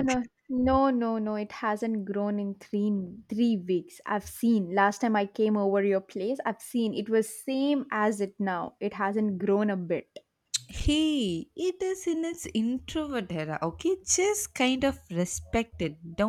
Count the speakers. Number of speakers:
2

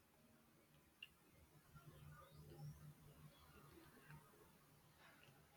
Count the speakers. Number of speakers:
0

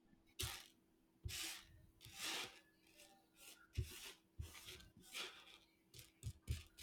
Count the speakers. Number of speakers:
0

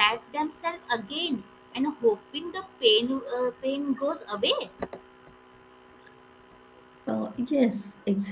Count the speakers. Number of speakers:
2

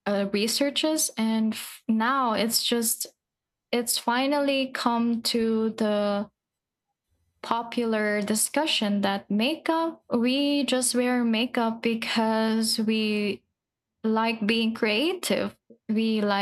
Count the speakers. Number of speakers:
1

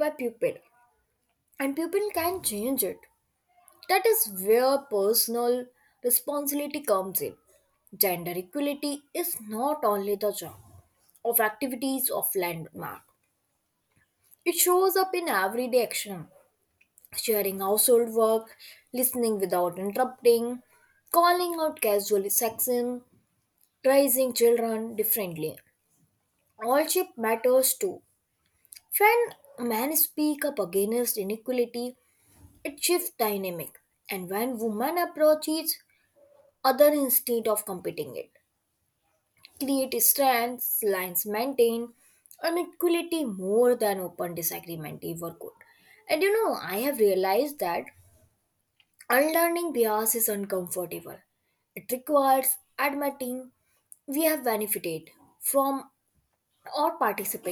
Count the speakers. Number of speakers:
1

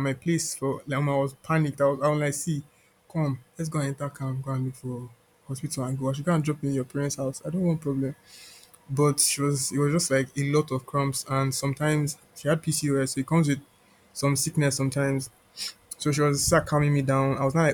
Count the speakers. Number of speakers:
1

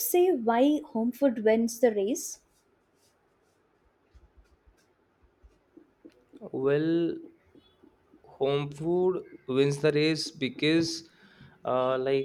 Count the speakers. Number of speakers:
2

